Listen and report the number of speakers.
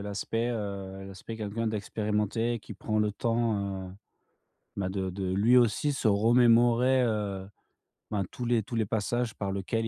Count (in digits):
1